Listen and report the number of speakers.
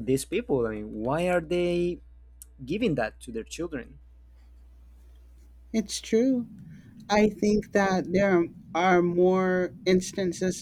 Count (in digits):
2